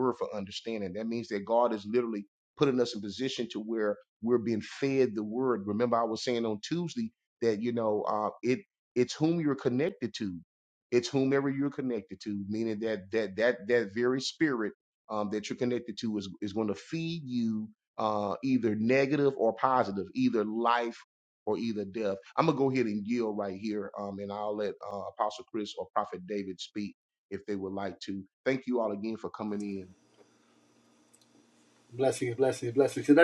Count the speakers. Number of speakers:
two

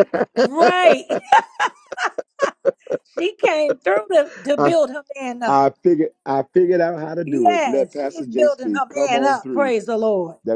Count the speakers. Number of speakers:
two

